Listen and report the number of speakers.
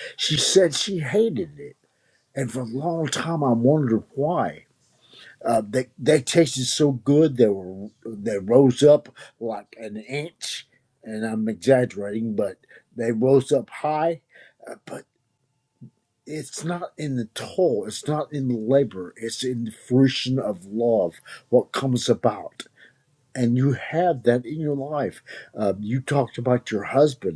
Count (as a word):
one